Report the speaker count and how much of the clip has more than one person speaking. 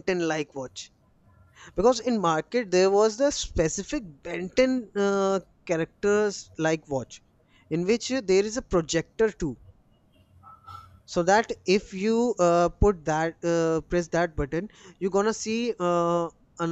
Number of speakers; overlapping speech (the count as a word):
one, no overlap